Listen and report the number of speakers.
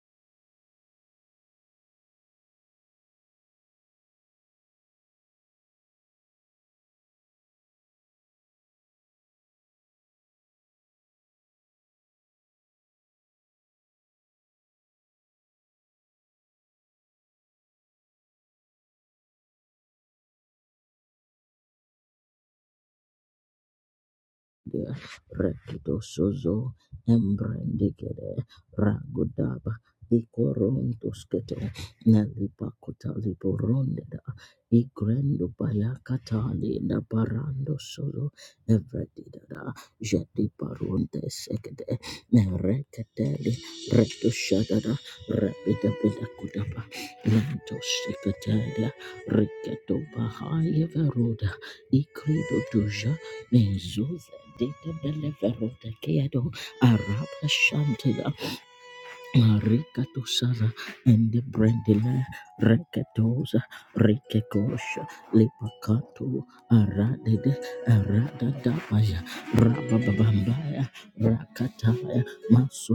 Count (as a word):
one